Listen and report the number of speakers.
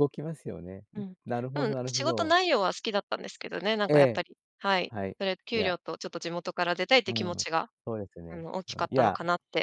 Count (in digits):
2